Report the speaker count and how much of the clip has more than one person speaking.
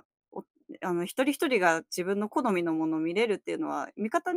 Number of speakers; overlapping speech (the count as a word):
one, no overlap